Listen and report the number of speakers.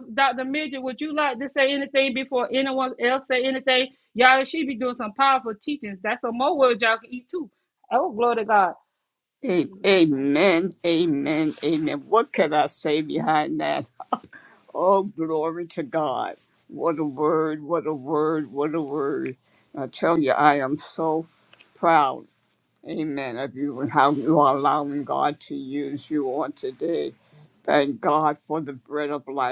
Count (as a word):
two